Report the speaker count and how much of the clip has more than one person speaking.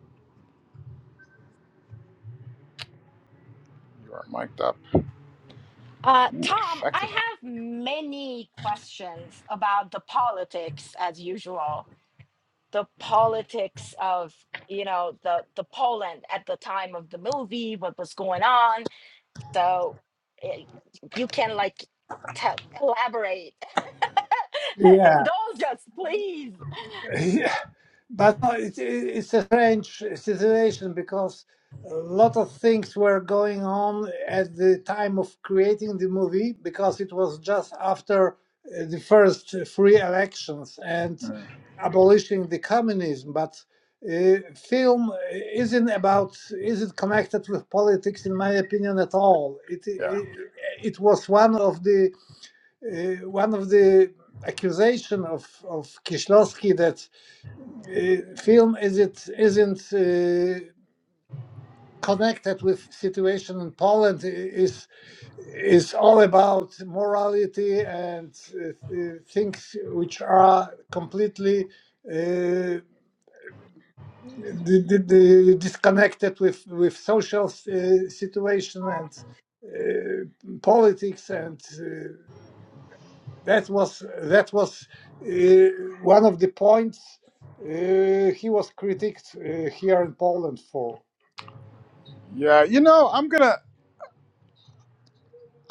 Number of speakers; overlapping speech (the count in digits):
3, about 1%